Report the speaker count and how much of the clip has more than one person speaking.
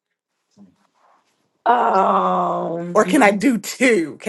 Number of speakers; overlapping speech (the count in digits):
2, no overlap